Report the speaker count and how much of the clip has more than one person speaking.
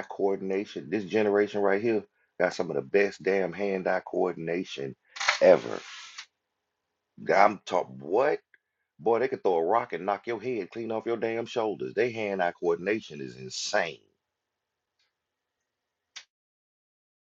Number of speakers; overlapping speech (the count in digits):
1, no overlap